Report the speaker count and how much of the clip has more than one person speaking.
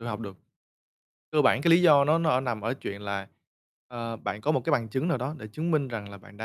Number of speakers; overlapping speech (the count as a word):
one, no overlap